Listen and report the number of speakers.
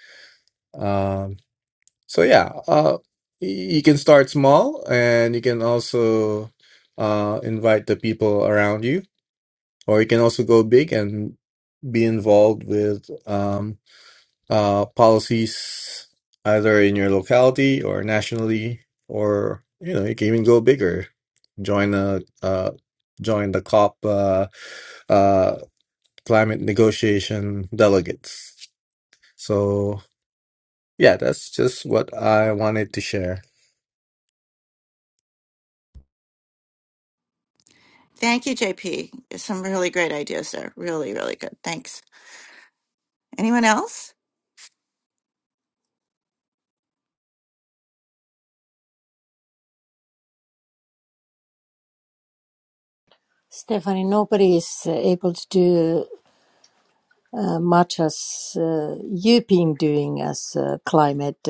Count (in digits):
3